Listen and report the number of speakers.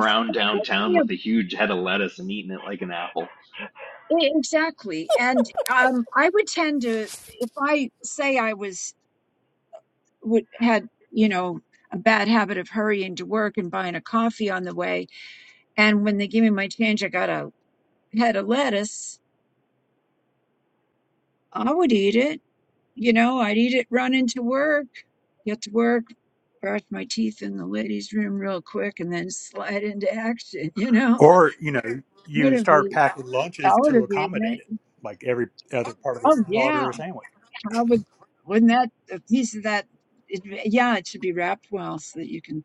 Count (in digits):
3